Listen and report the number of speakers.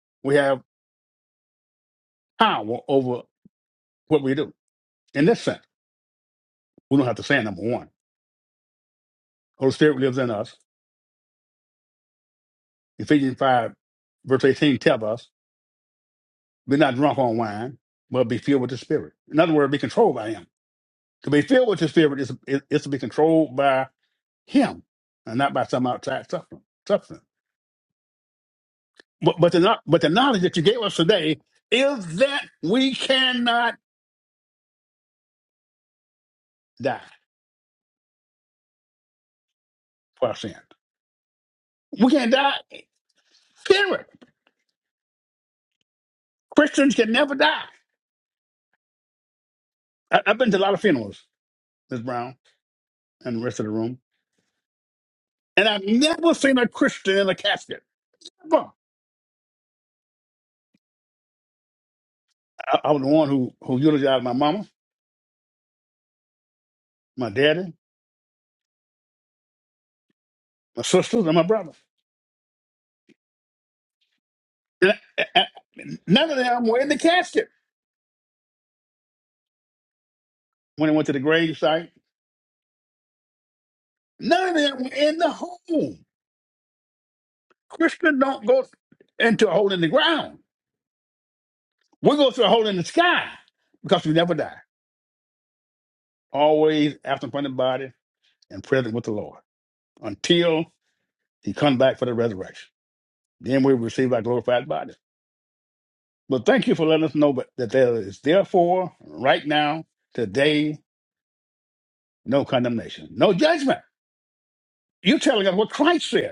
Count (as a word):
one